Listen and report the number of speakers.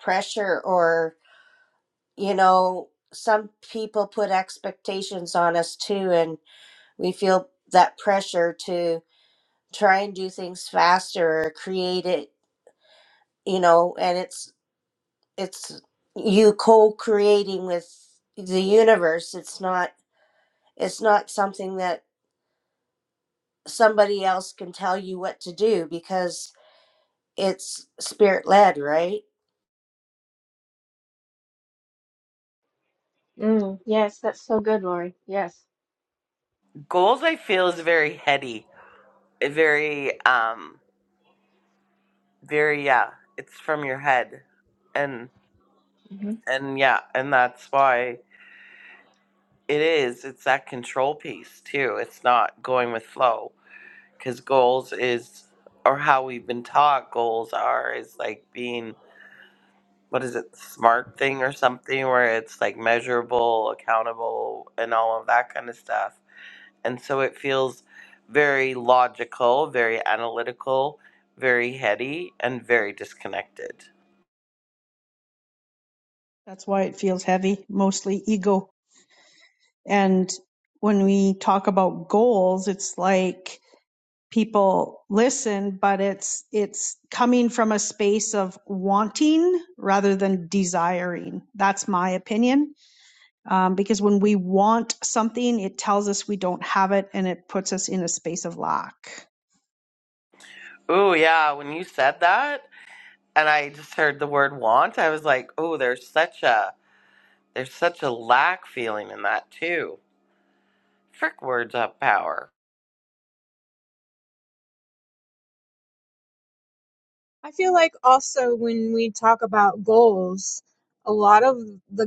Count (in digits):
5